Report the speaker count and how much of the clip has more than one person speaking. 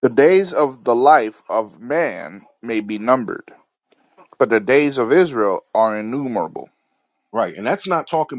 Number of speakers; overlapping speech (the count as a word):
two, no overlap